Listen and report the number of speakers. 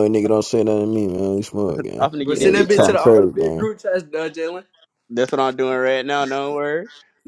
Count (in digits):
3